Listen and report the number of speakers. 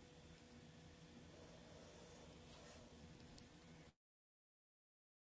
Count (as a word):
zero